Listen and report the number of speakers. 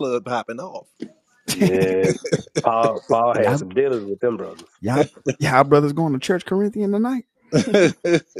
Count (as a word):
three